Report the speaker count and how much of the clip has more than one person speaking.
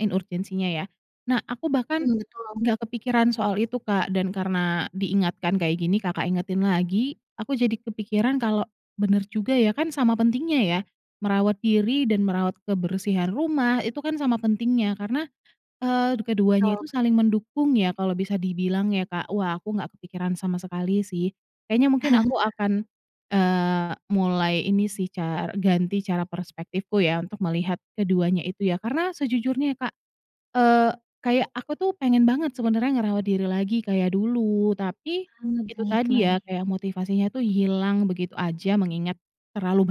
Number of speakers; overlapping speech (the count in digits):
2, about 3%